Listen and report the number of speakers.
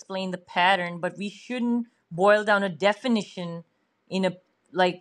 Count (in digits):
1